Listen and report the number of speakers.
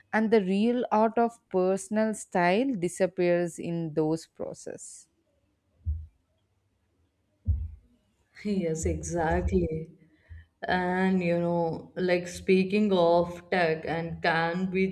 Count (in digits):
2